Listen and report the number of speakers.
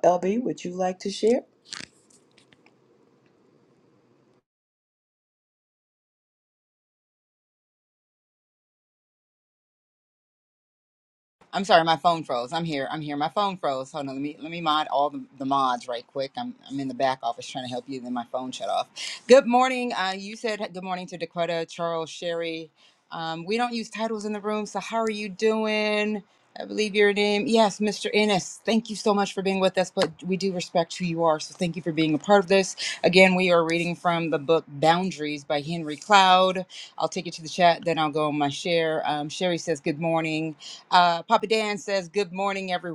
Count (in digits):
2